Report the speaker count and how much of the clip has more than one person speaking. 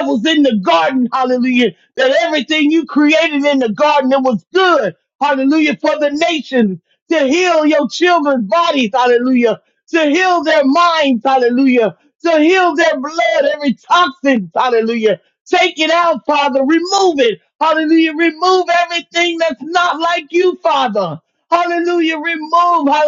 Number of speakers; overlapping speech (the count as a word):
one, no overlap